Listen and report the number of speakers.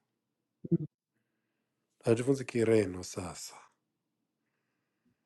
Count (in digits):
1